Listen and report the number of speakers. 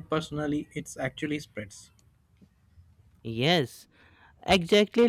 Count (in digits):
2